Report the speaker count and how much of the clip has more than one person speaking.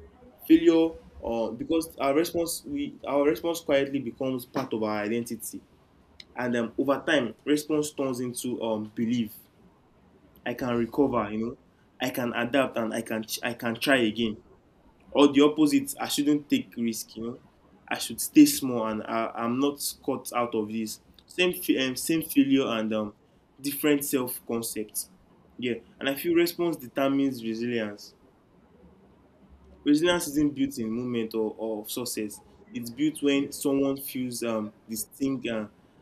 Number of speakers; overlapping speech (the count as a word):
one, no overlap